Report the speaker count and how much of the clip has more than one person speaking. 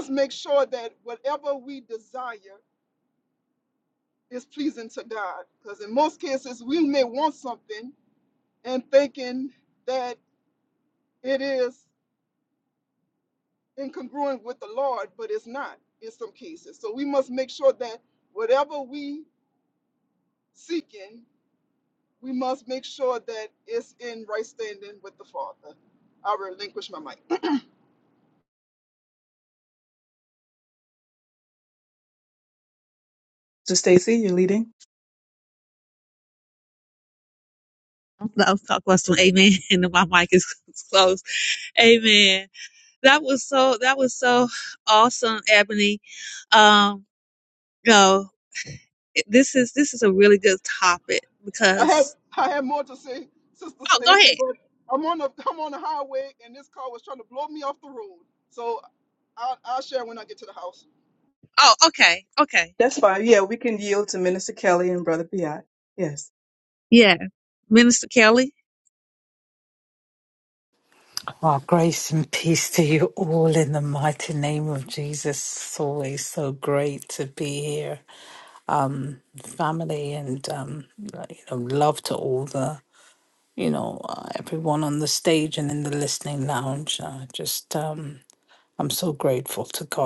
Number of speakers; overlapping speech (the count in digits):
4, about 1%